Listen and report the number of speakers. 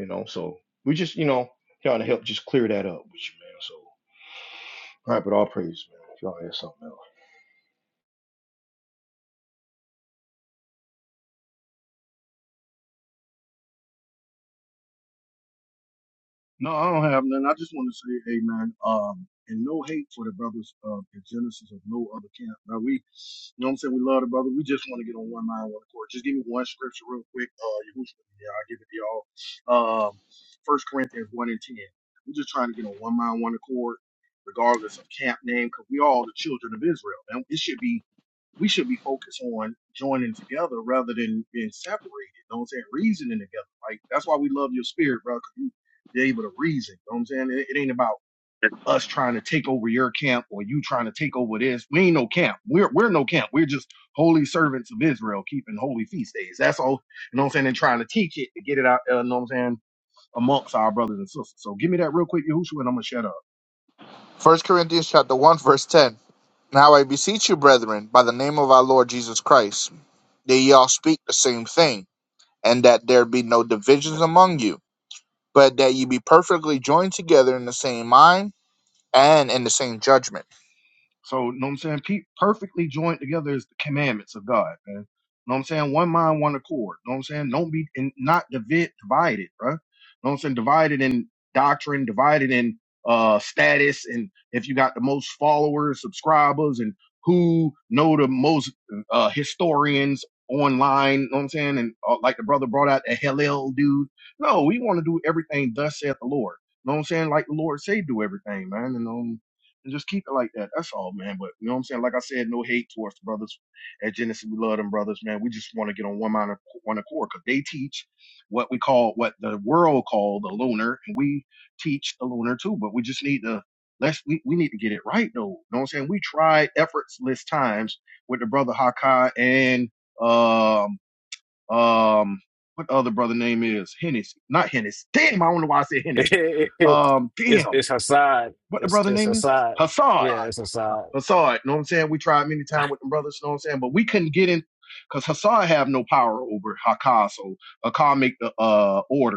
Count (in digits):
4